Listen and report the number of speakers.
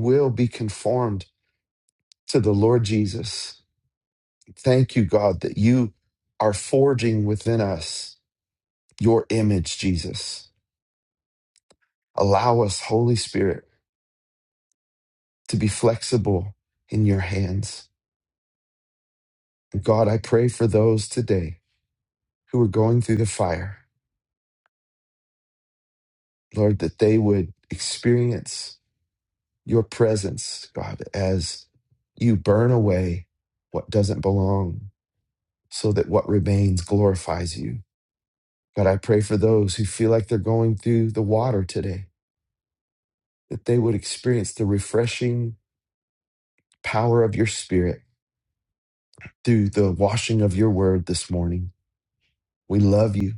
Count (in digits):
1